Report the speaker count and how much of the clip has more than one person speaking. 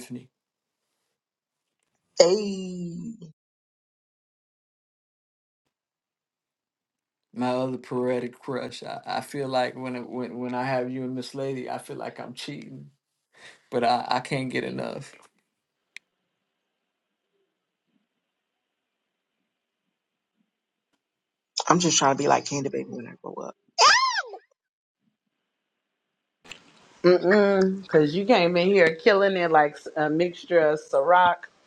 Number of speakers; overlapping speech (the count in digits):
3, no overlap